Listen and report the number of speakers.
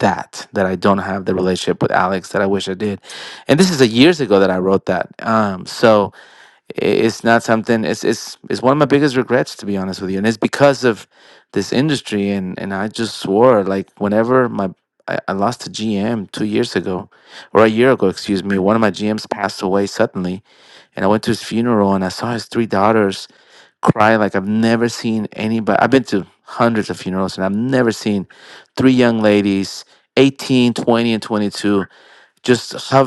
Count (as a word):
one